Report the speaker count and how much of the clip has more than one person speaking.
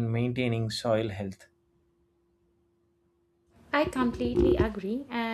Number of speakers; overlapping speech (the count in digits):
2, no overlap